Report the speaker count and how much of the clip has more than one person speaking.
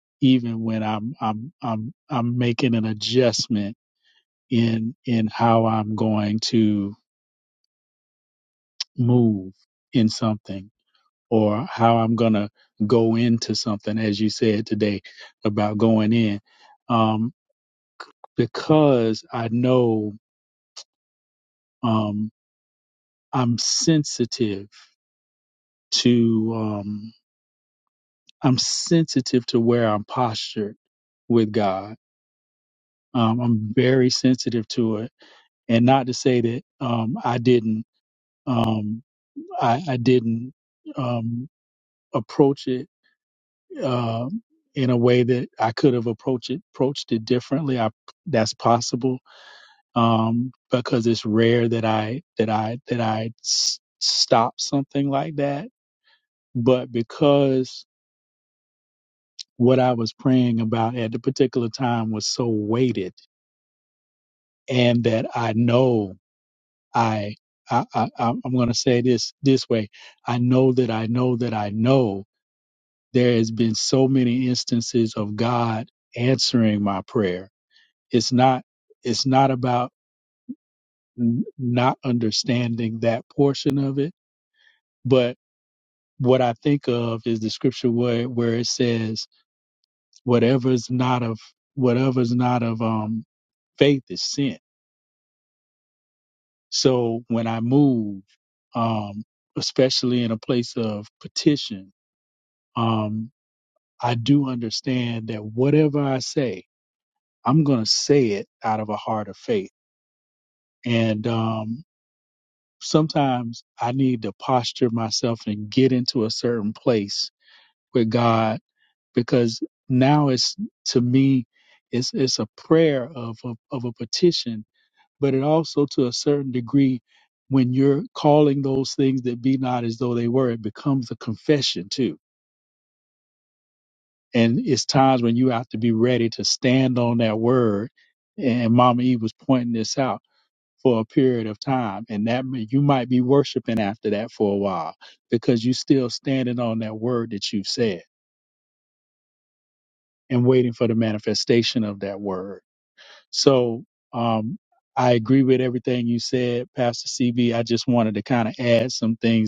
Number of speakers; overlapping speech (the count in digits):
1, no overlap